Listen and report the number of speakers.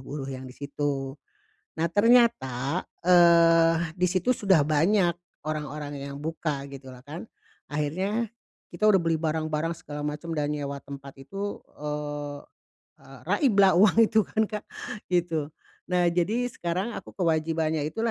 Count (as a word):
one